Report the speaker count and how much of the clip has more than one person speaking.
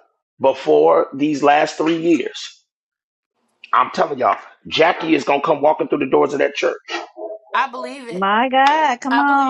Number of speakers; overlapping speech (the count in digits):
3, about 6%